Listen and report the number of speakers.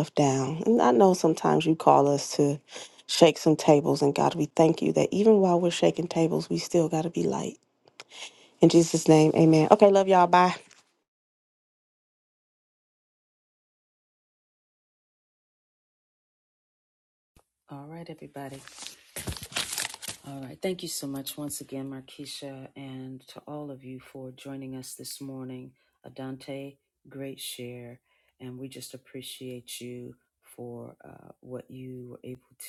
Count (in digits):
2